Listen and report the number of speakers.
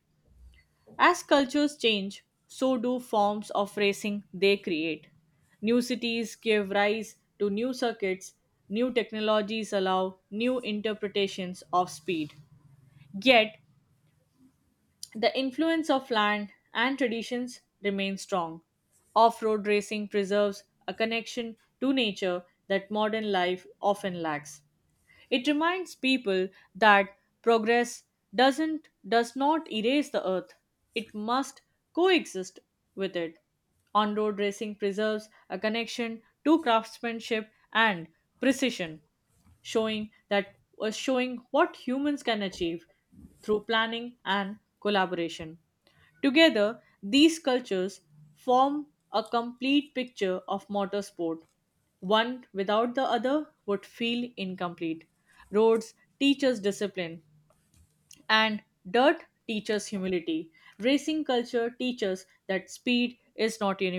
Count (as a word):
one